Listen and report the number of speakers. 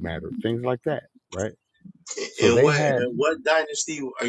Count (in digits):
2